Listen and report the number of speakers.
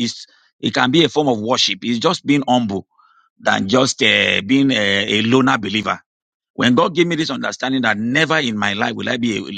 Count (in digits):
1